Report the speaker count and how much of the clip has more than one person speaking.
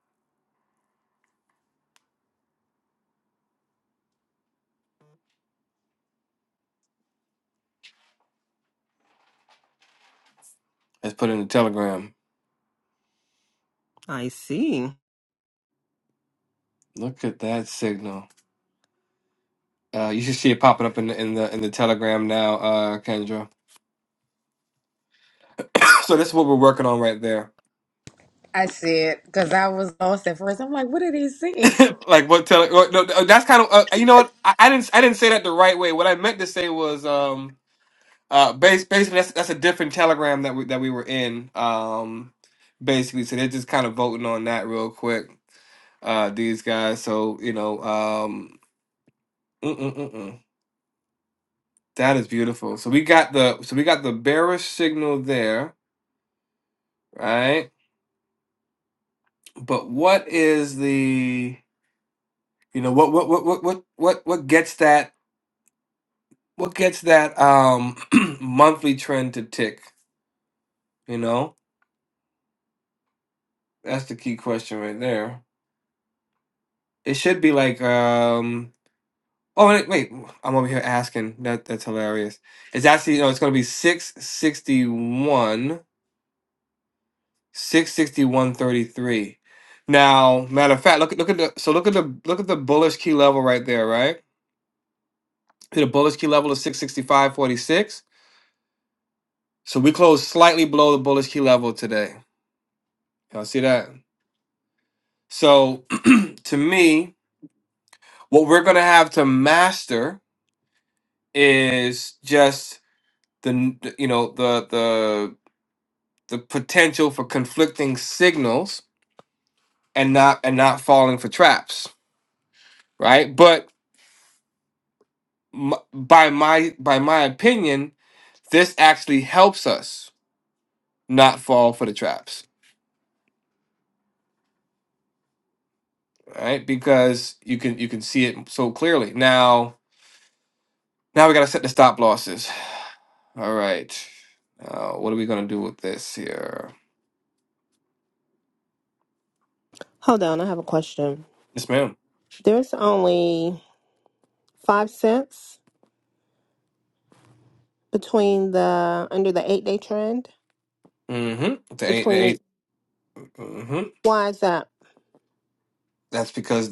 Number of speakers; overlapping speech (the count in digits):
3, under 1%